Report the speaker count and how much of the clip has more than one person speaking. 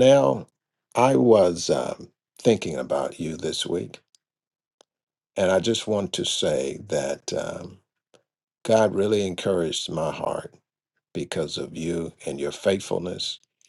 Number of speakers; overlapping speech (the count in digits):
1, no overlap